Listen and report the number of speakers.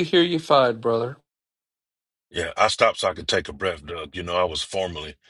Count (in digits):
2